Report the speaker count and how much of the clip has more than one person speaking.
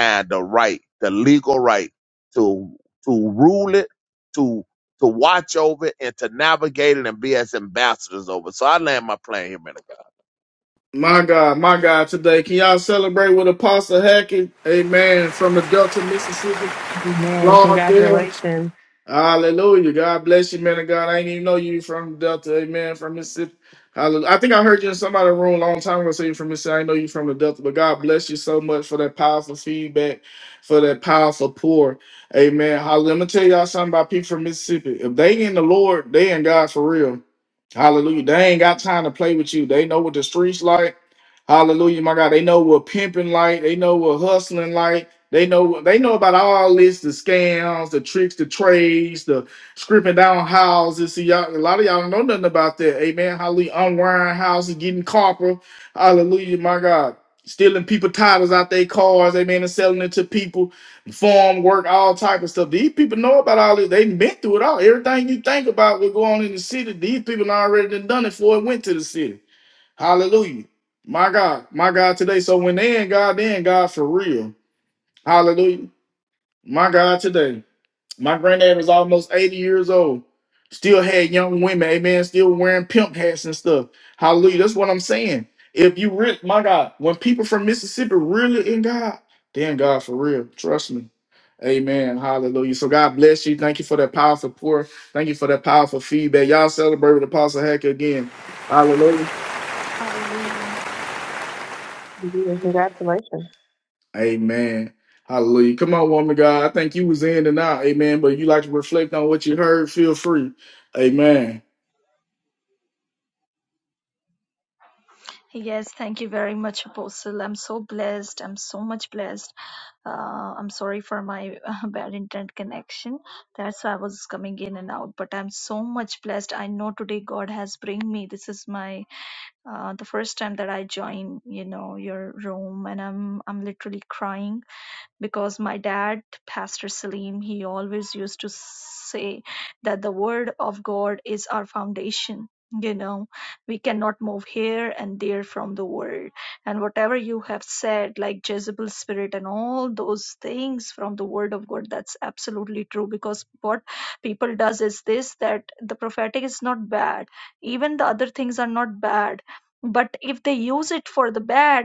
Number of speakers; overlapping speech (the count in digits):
4, about 1%